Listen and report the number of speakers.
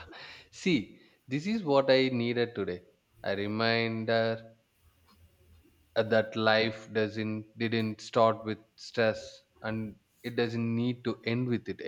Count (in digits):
1